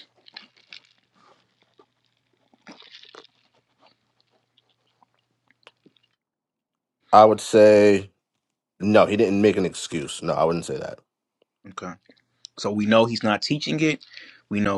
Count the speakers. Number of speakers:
two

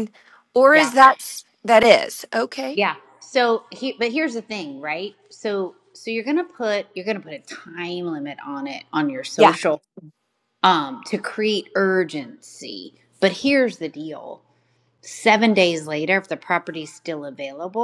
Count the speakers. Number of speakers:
two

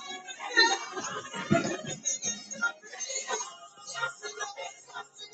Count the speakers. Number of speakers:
zero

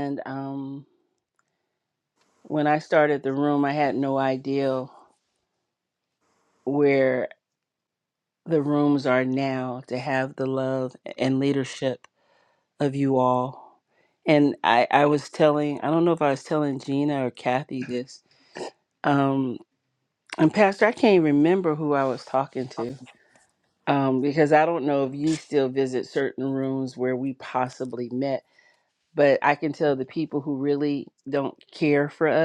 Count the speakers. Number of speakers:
one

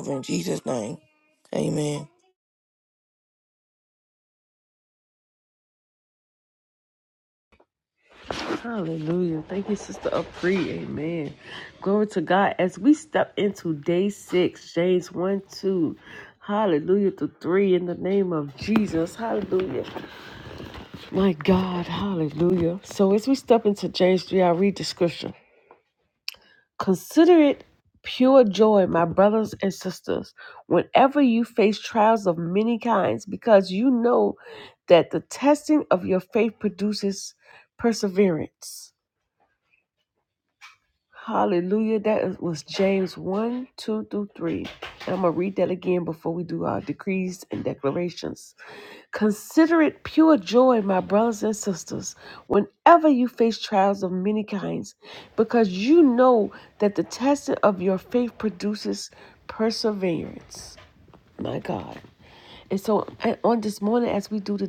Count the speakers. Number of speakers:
two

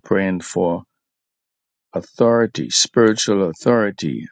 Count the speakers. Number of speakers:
one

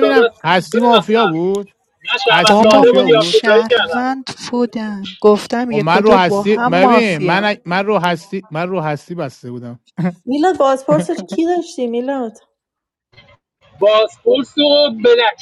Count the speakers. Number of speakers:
four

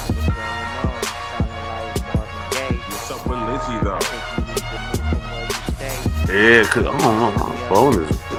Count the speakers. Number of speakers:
three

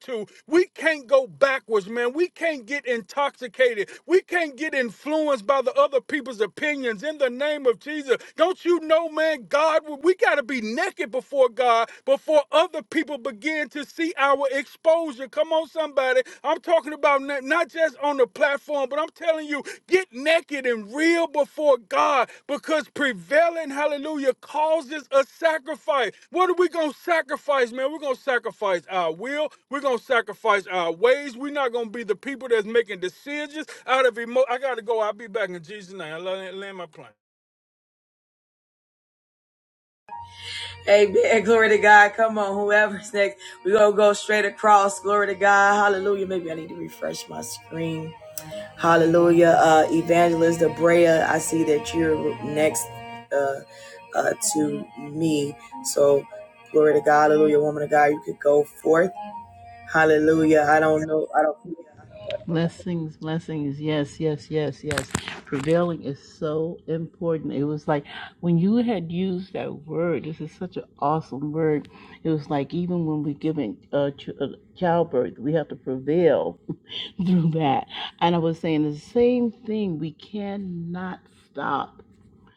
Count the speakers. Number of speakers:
three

